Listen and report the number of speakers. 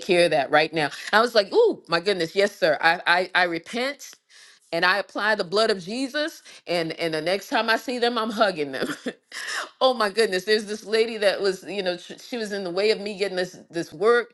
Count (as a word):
one